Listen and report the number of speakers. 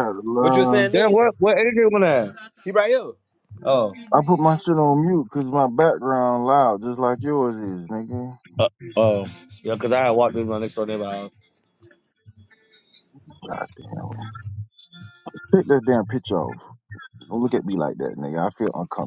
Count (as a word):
three